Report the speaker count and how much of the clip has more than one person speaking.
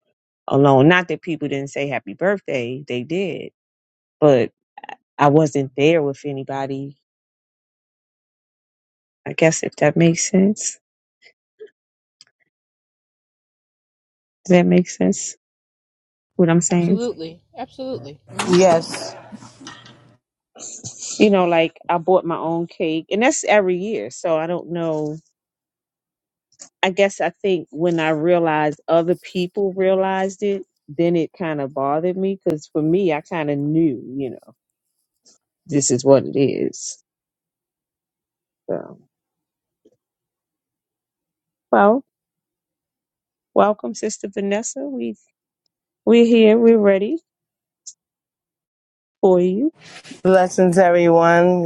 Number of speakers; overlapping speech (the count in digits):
3, about 1%